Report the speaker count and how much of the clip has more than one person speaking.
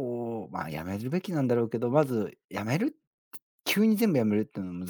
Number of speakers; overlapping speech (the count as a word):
one, no overlap